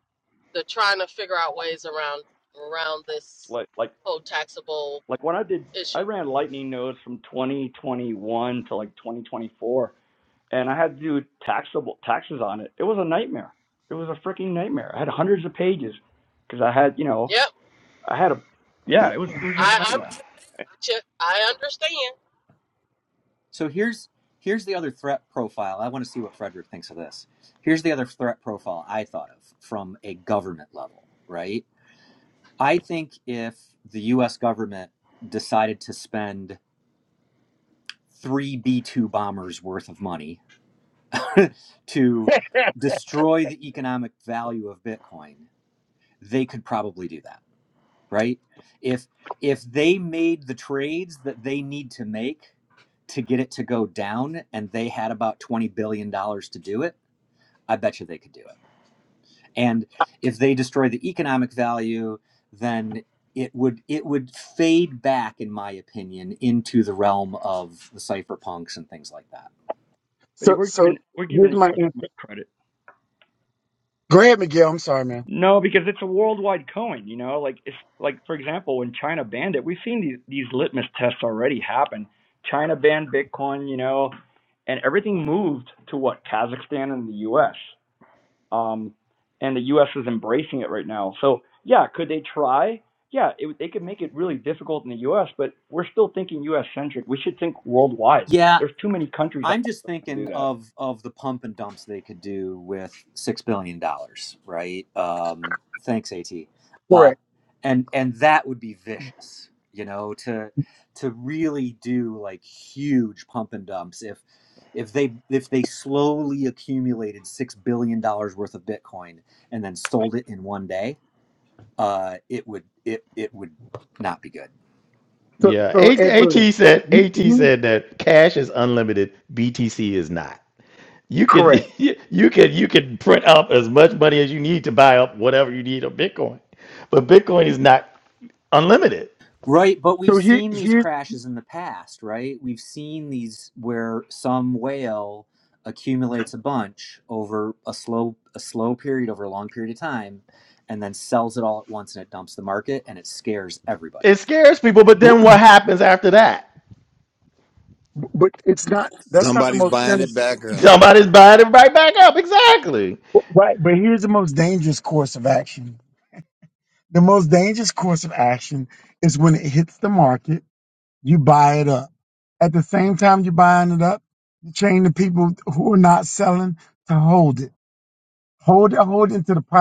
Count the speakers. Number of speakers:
6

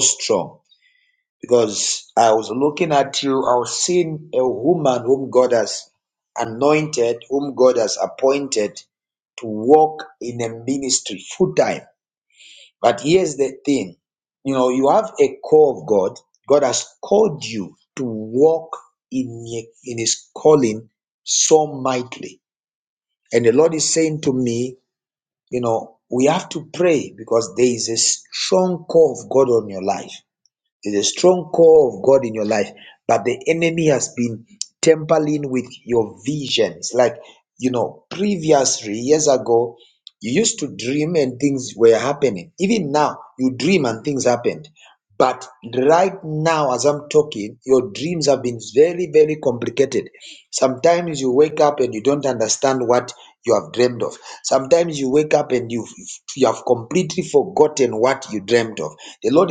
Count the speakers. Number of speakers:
1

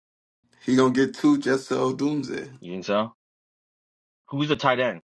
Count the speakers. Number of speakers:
2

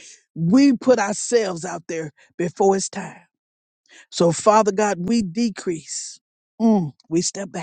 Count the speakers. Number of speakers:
1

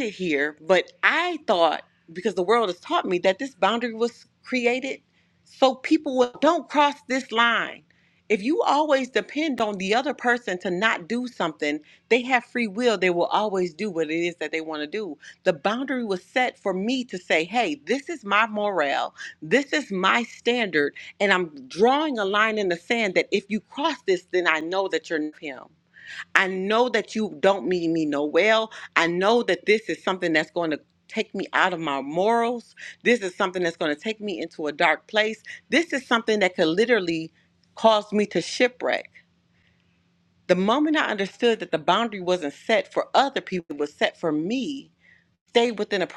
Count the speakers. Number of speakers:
1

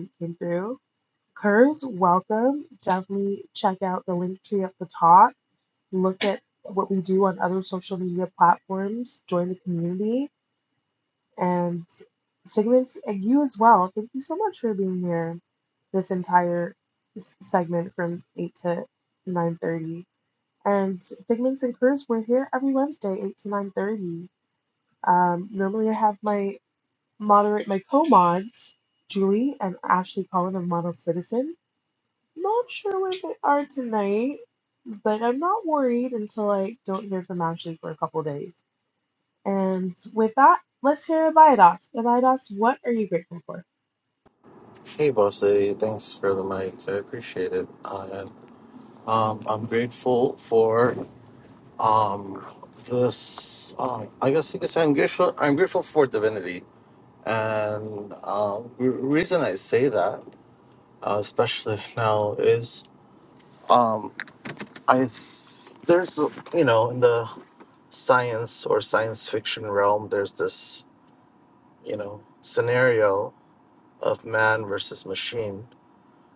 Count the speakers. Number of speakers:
2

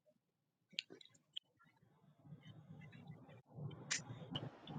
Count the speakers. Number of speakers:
0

